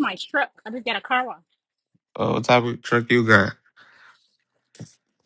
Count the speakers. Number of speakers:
two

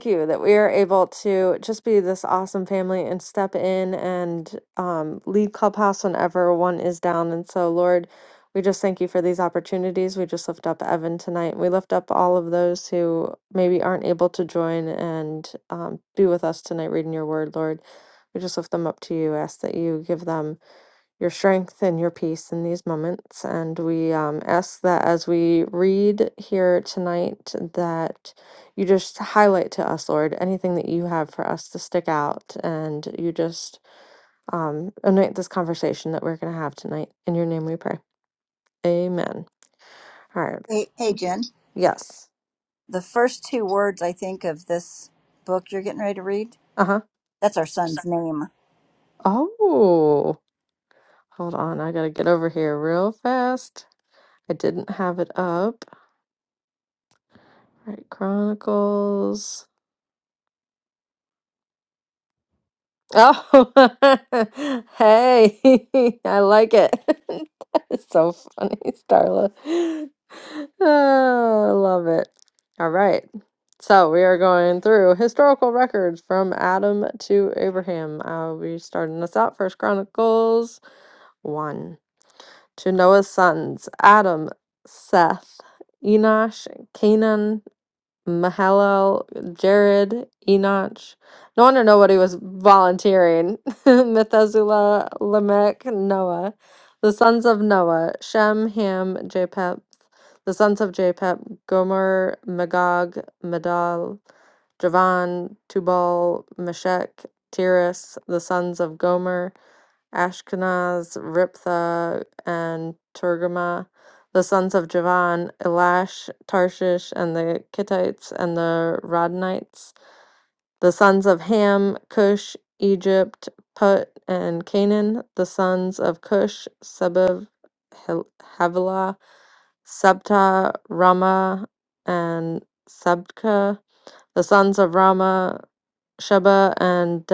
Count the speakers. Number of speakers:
two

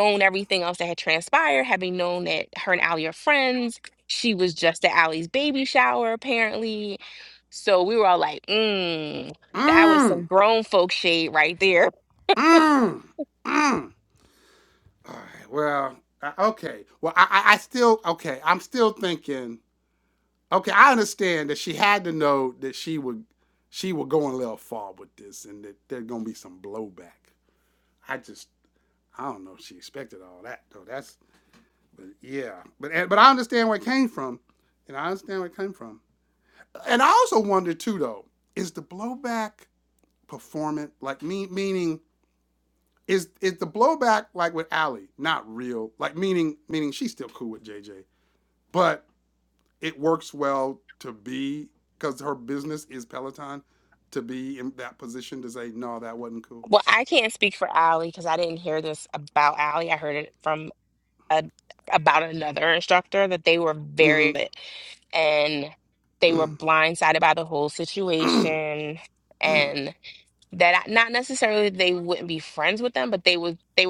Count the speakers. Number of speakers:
two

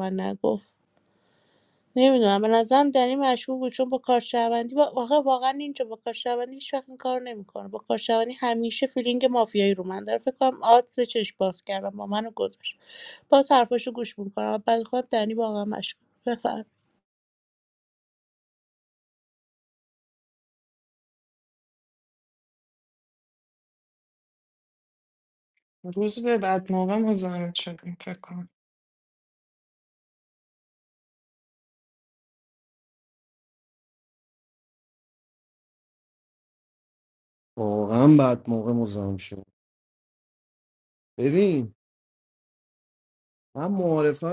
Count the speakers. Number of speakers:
three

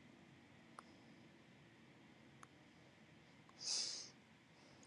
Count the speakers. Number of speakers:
zero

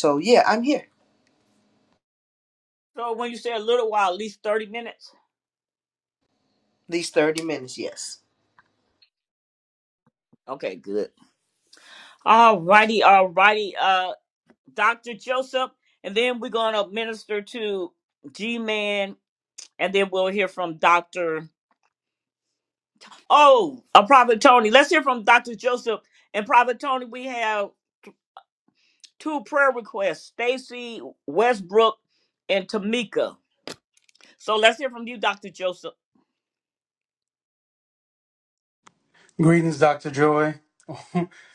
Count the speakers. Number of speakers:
three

